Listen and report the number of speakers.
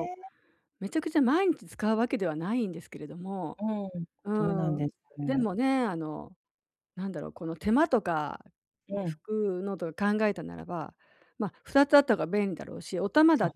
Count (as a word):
two